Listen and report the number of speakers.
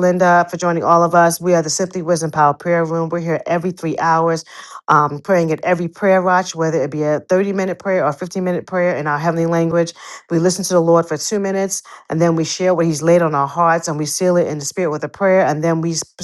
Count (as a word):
one